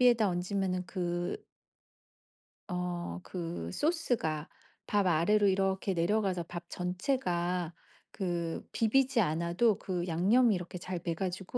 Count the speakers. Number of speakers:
one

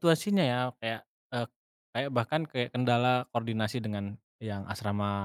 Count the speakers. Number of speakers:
one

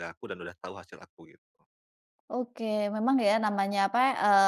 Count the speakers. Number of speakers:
two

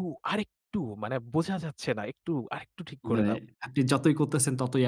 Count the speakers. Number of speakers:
two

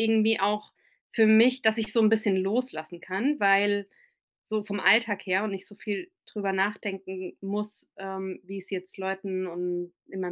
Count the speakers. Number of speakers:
one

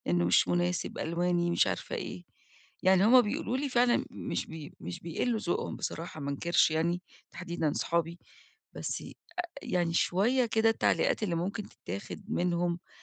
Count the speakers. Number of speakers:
one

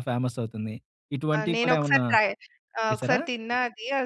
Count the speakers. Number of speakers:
two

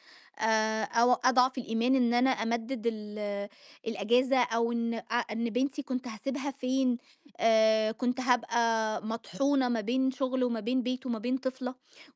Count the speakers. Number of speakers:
one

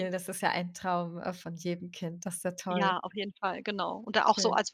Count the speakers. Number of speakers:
two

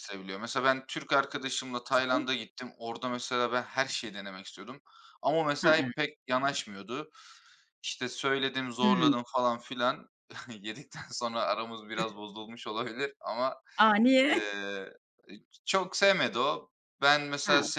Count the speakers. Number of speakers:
two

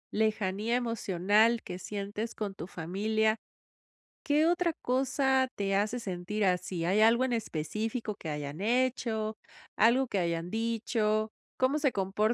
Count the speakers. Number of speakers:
one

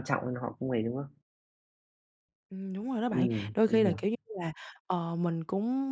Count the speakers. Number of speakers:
two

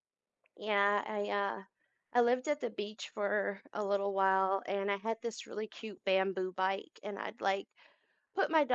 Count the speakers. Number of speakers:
one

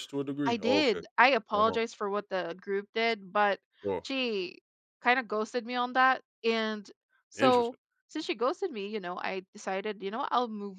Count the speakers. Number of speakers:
two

